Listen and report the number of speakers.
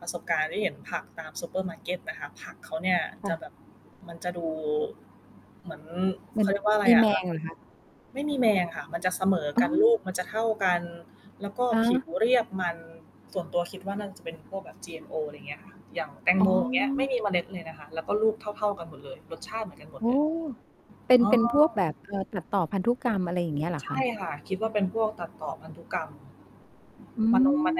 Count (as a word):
two